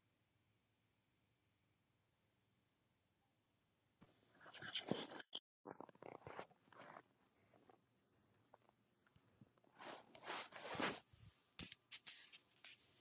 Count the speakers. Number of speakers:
0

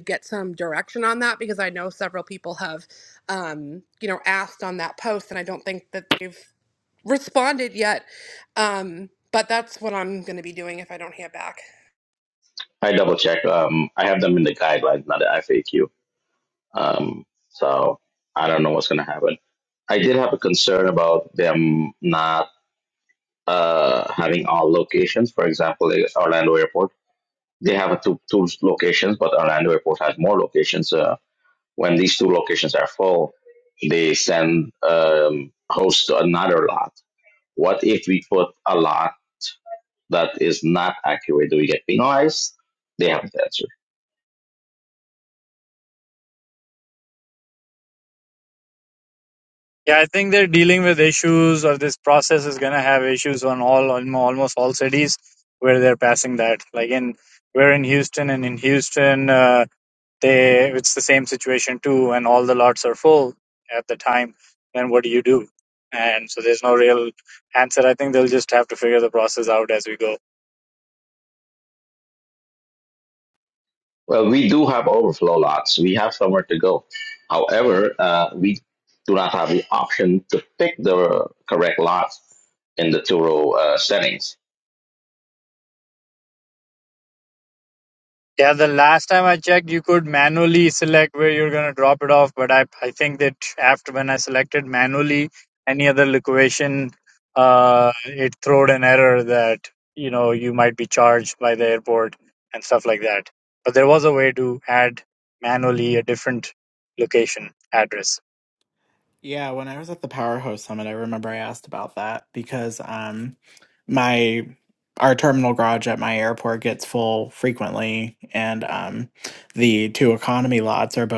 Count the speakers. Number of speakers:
4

